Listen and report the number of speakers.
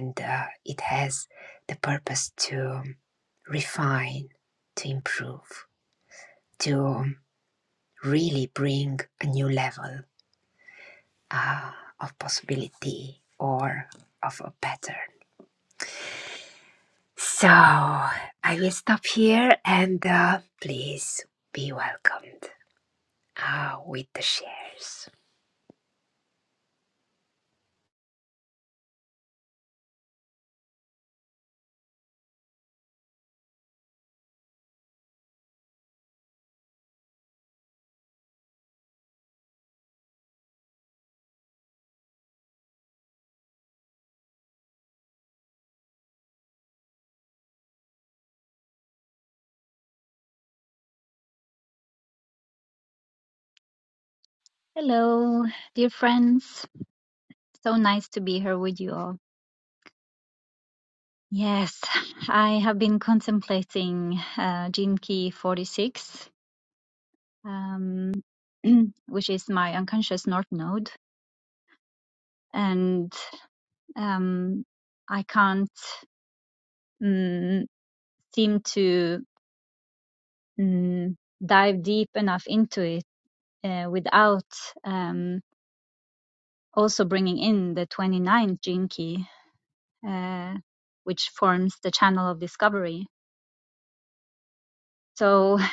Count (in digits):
2